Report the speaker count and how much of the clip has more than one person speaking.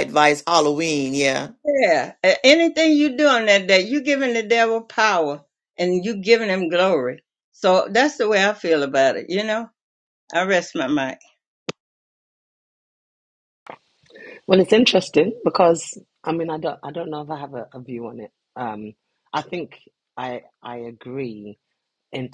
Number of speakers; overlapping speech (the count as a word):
three, no overlap